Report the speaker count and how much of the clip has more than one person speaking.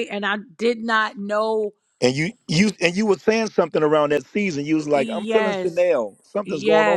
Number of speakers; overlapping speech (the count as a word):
two, about 18%